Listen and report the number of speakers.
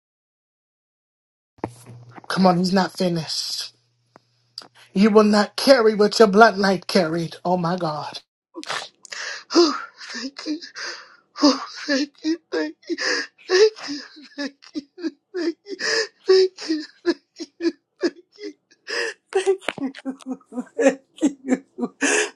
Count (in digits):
2